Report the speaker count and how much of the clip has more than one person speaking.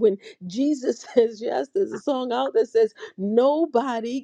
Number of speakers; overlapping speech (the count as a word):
one, no overlap